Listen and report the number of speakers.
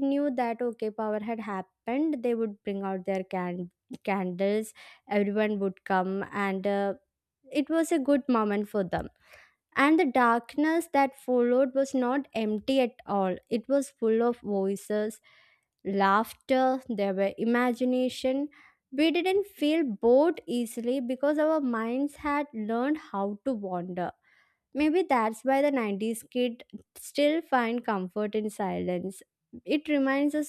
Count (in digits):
1